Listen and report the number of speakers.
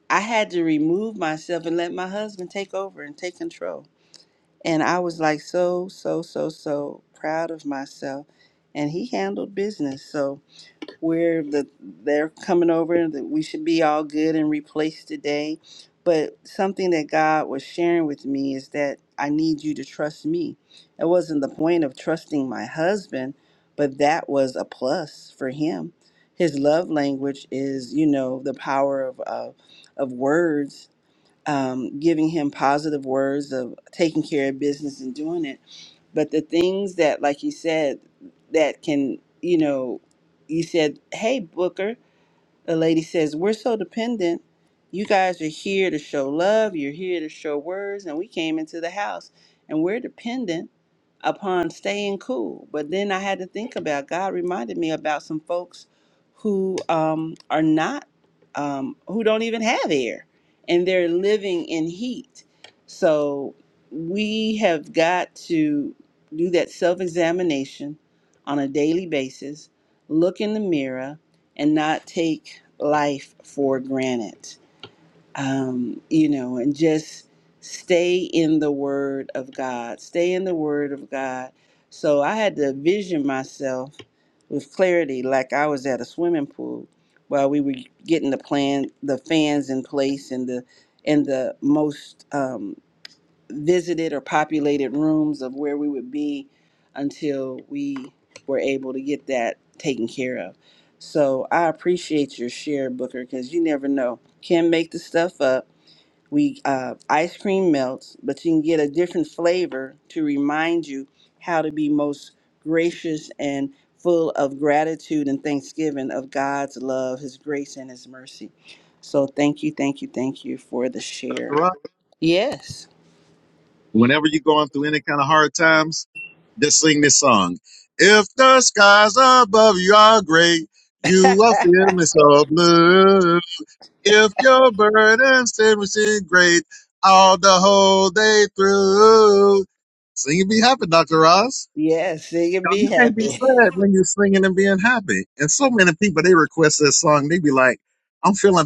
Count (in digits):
2